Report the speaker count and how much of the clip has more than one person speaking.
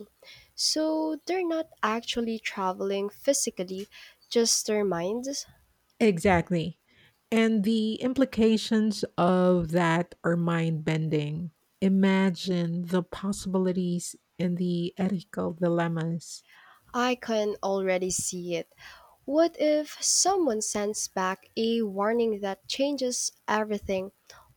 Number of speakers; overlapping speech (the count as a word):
two, no overlap